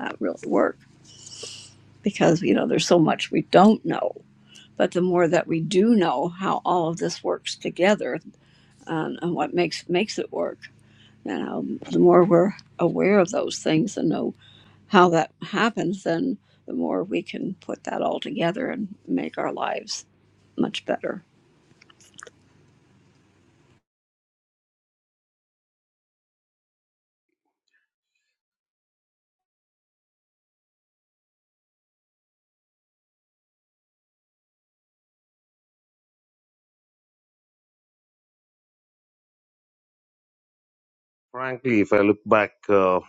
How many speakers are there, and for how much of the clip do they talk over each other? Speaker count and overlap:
2, no overlap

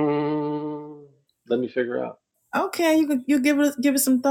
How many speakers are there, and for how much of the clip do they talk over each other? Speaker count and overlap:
2, no overlap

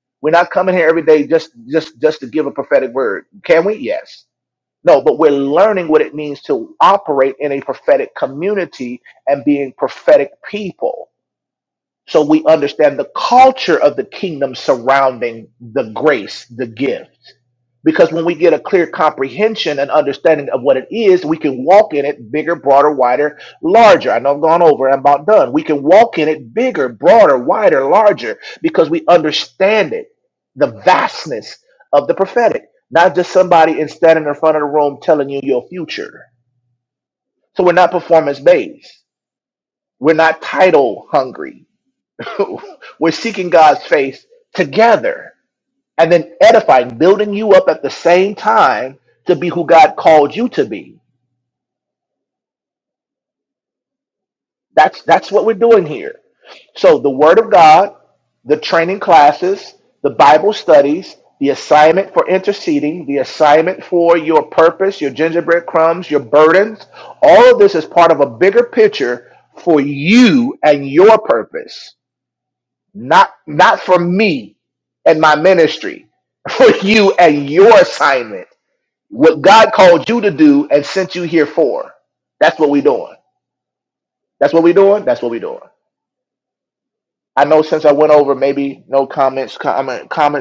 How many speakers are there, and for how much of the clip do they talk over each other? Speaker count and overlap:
1, no overlap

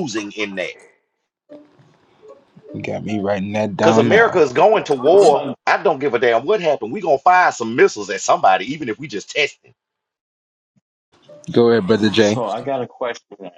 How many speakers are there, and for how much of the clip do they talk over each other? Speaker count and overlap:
3, about 11%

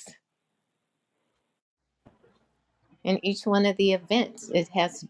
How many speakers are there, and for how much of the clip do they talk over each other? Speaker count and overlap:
1, no overlap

